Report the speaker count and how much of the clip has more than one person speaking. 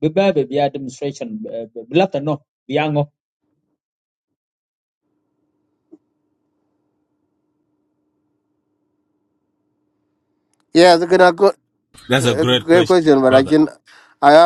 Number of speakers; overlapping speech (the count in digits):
3, about 6%